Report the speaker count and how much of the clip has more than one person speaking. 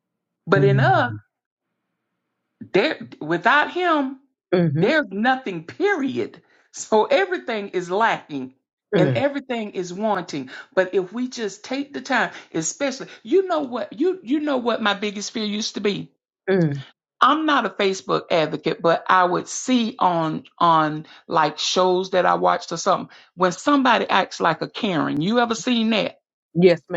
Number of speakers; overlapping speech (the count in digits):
2, about 3%